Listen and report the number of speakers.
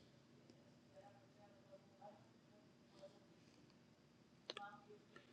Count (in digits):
0